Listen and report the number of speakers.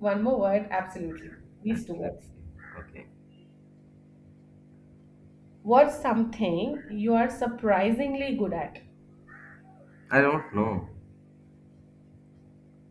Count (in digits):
2